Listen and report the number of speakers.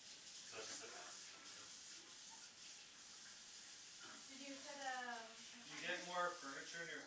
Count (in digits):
3